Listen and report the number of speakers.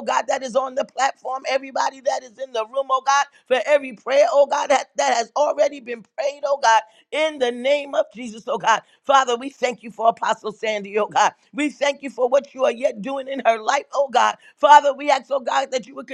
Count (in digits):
1